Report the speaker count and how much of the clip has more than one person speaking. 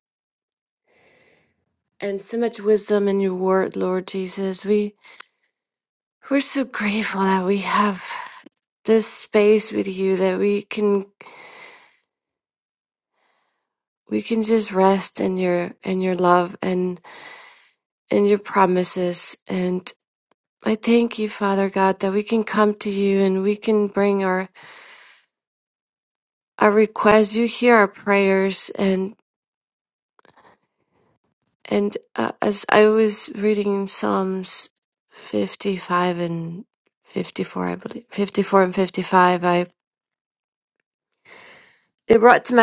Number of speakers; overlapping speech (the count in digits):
1, no overlap